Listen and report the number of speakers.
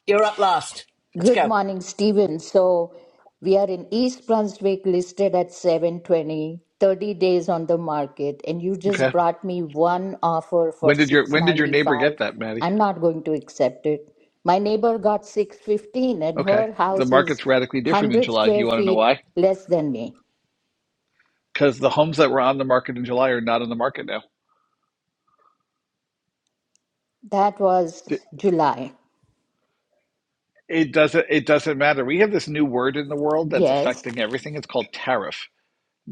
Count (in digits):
3